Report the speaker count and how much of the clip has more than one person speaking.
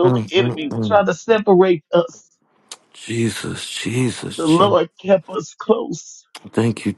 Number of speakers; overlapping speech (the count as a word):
two, about 19%